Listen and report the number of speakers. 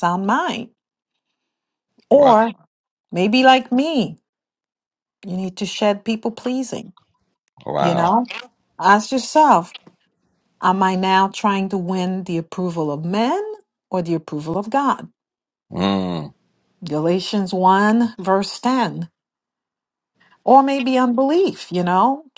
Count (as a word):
two